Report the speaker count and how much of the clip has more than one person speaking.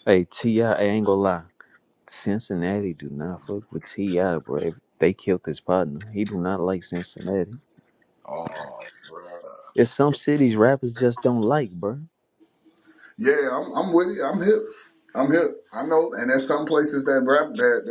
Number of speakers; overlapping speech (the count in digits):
2, no overlap